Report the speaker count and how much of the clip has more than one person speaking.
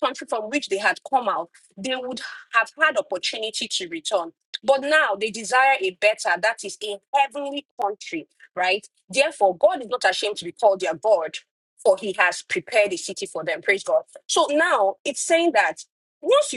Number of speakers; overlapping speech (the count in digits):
1, no overlap